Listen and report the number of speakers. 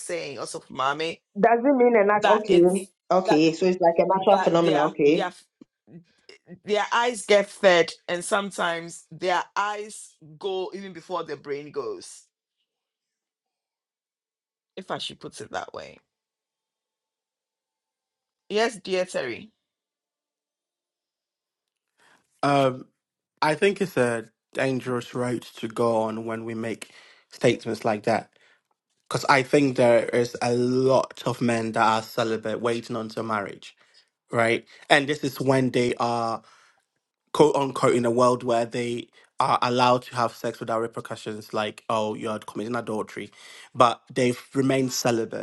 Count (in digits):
3